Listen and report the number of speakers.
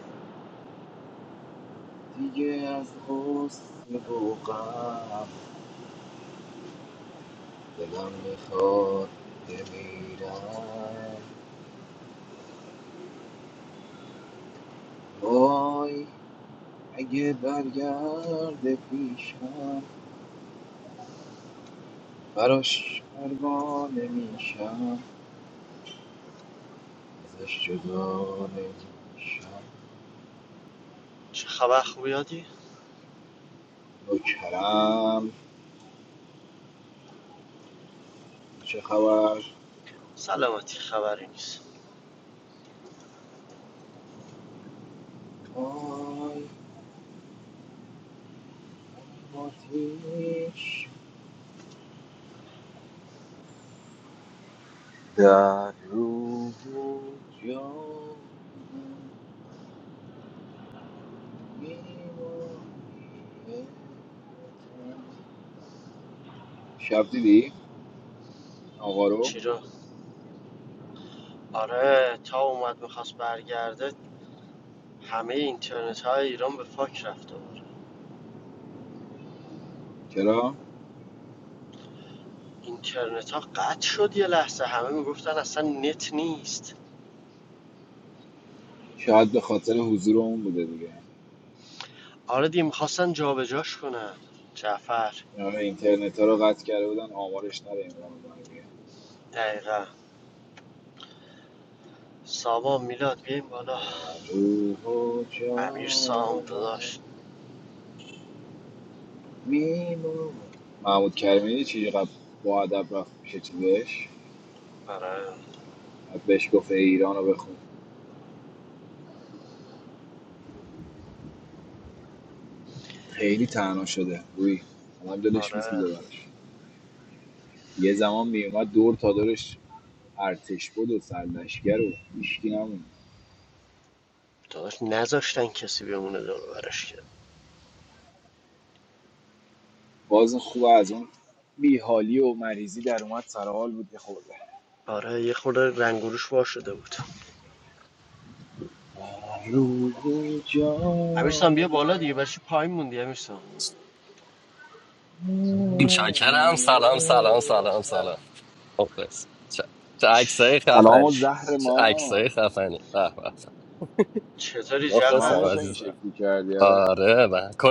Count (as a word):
three